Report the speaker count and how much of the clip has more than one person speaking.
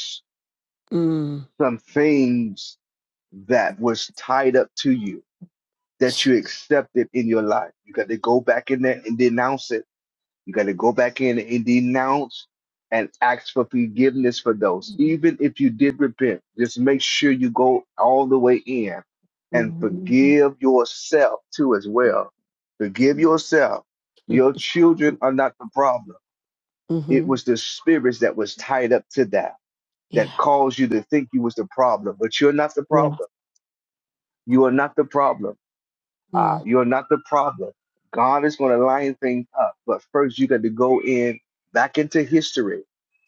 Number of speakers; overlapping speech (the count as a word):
two, about 2%